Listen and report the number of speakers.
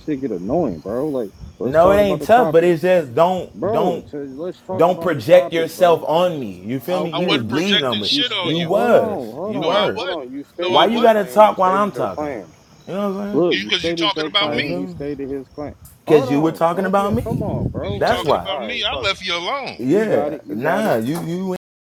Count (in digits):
3